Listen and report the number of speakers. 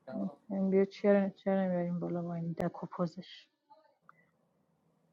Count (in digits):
1